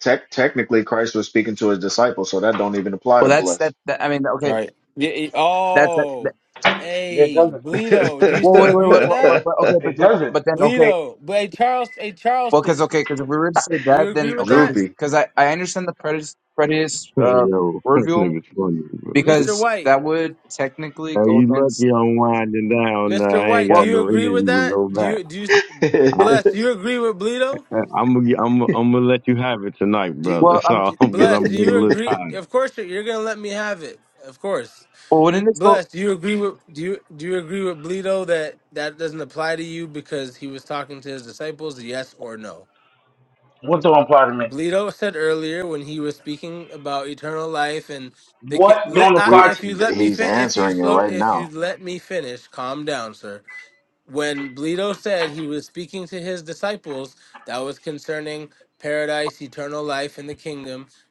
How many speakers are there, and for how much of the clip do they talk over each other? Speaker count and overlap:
five, about 22%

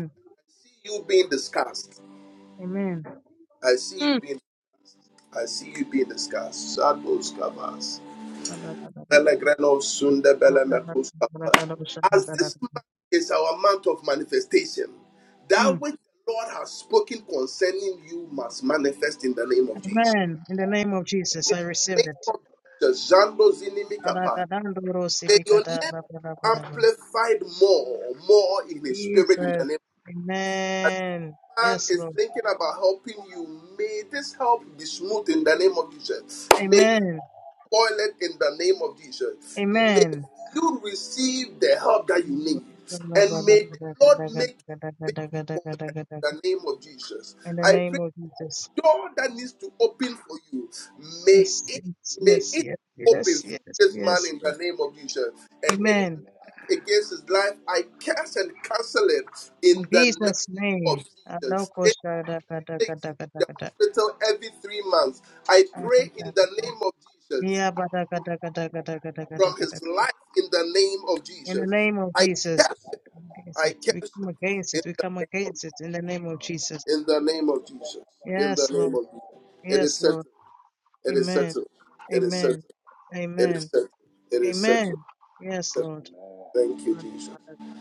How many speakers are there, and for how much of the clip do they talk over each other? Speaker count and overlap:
two, about 19%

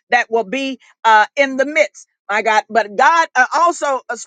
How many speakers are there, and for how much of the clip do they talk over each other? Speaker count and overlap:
one, no overlap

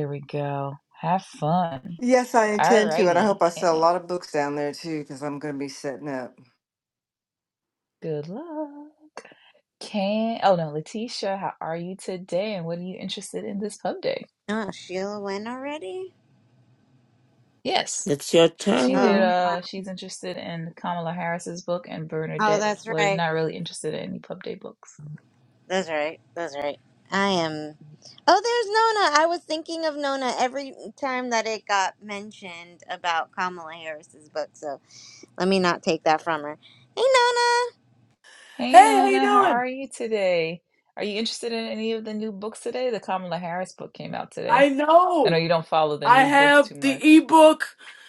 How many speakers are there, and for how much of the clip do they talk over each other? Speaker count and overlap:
five, about 11%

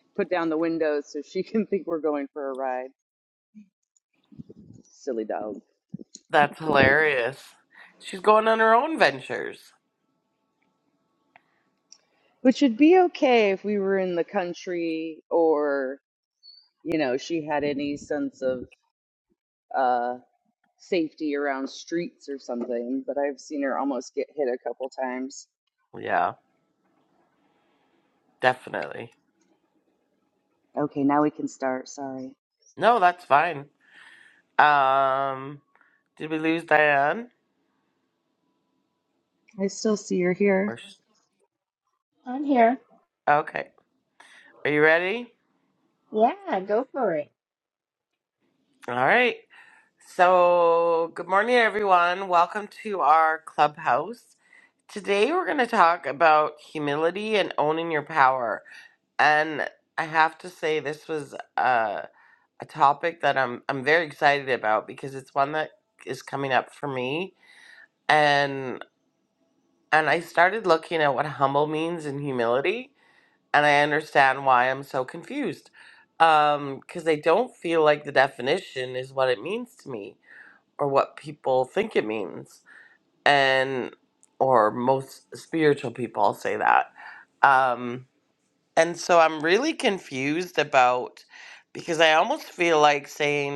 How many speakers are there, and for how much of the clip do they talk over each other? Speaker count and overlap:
three, under 1%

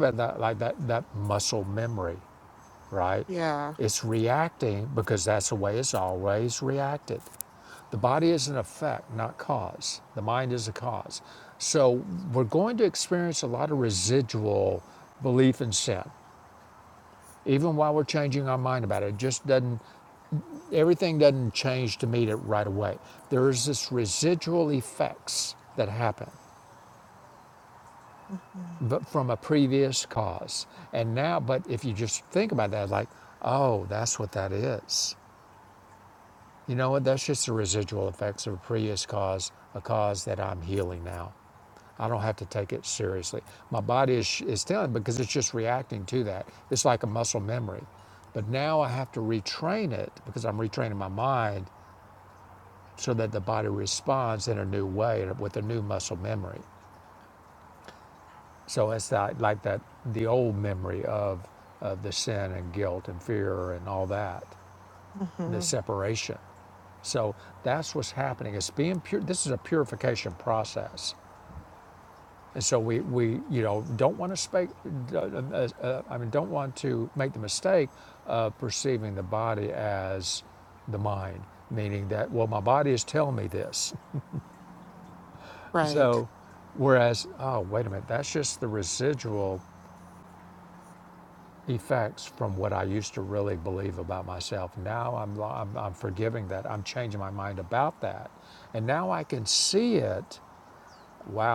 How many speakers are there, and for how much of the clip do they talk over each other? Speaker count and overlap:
two, under 1%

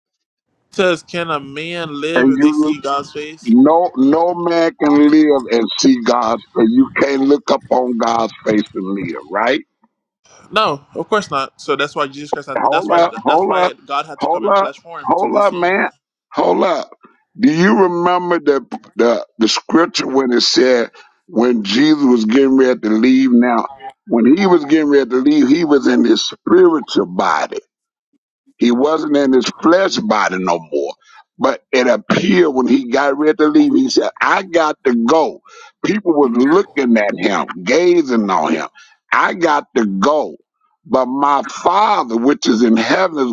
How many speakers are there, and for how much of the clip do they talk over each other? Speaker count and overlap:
two, about 7%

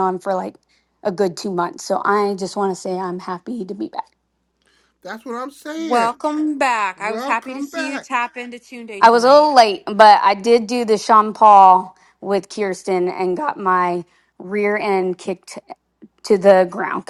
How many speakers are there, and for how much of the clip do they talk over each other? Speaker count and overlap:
three, about 11%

